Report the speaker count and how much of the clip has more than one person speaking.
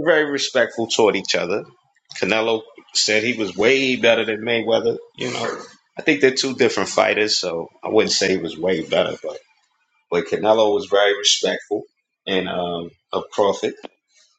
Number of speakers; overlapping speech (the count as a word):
one, no overlap